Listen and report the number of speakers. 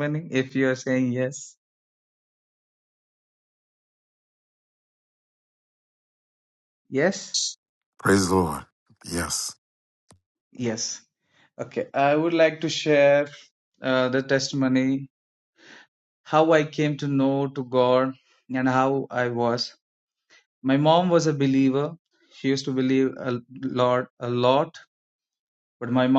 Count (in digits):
2